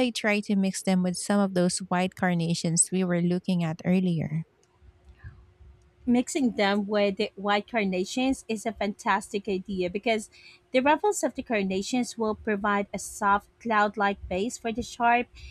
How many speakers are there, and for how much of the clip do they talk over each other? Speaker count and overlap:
two, no overlap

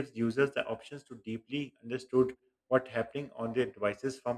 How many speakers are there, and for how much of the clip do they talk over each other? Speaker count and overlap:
one, no overlap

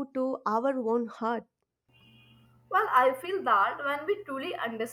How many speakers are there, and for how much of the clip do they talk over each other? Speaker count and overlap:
two, no overlap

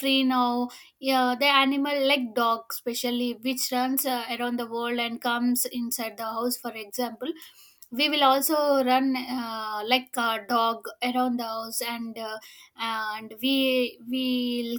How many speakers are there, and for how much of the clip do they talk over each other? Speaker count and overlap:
one, no overlap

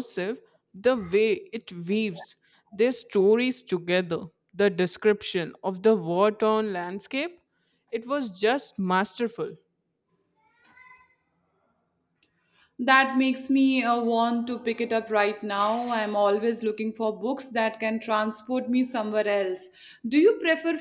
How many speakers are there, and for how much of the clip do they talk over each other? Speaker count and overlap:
two, no overlap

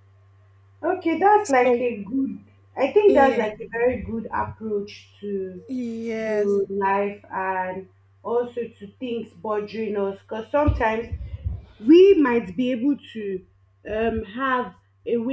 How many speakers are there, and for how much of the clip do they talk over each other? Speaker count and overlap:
two, about 5%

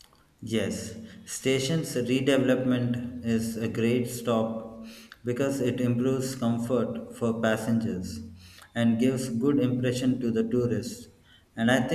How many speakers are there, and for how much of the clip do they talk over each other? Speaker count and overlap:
one, no overlap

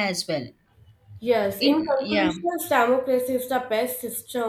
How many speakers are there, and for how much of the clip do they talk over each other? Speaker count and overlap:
two, about 17%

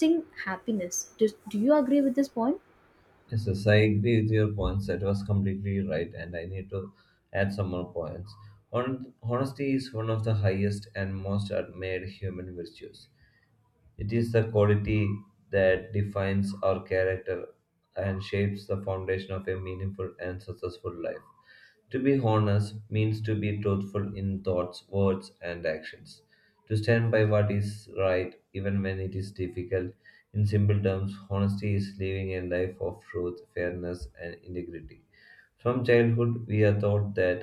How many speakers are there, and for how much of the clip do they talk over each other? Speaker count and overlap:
two, no overlap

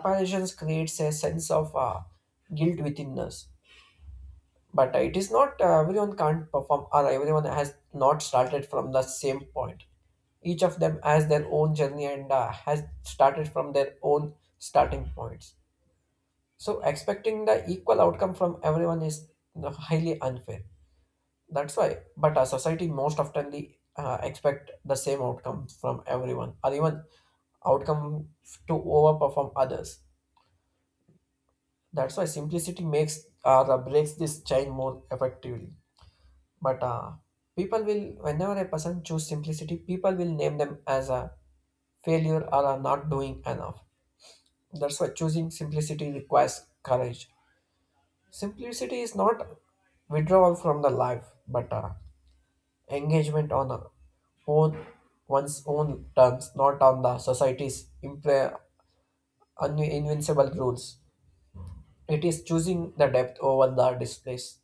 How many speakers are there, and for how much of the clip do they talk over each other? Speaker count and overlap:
one, no overlap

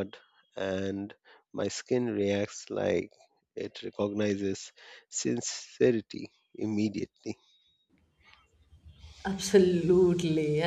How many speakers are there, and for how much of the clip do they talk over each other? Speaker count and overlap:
two, no overlap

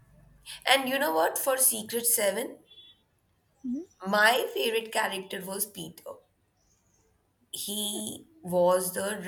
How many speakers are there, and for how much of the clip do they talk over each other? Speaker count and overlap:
one, no overlap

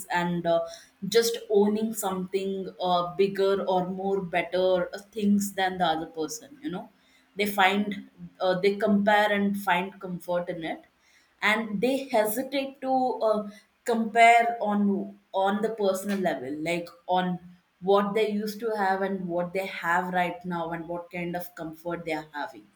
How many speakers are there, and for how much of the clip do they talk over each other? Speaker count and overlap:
one, no overlap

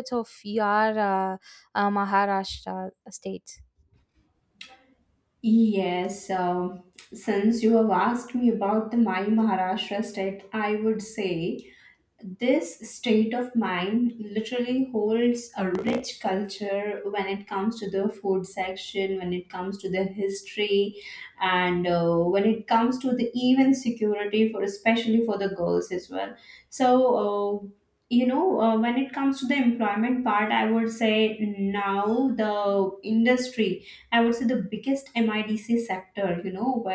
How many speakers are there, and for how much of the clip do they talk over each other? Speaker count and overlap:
two, no overlap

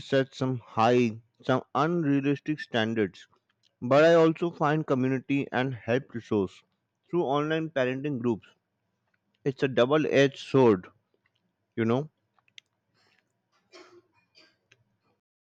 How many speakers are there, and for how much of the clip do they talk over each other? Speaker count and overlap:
one, no overlap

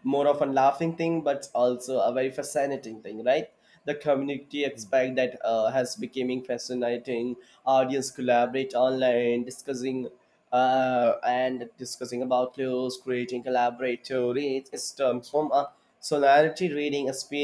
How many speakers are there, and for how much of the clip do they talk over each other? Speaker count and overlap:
one, no overlap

